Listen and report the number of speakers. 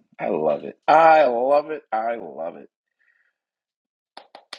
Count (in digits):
1